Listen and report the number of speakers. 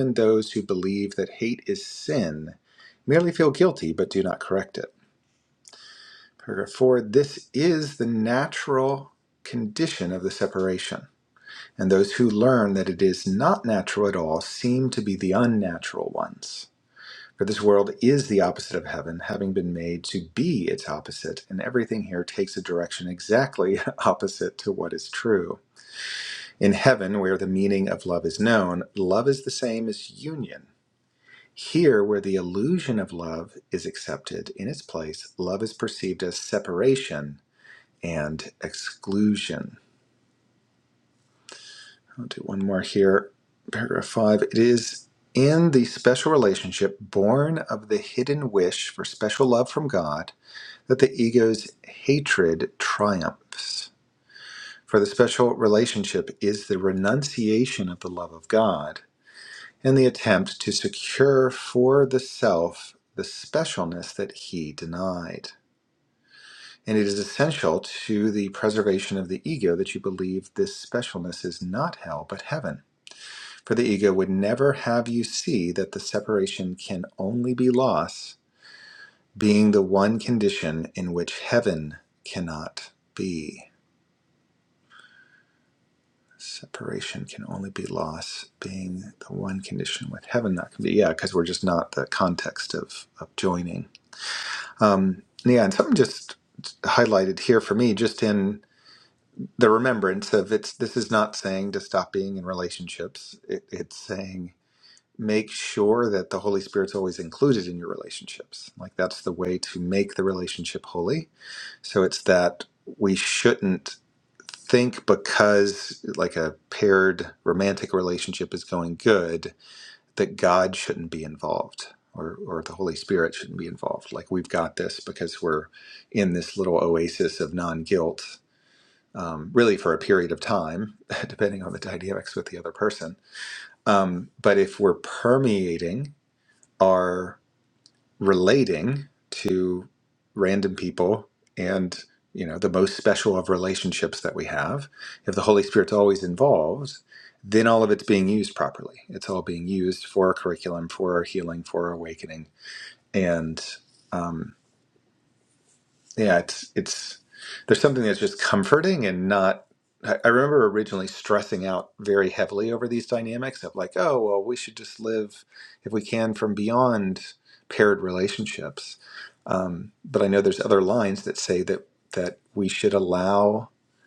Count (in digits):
1